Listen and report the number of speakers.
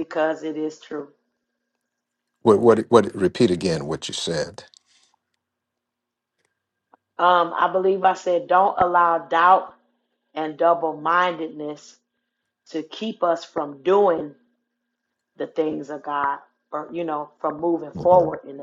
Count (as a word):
two